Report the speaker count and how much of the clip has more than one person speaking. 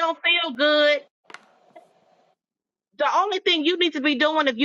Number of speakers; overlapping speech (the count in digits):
1, no overlap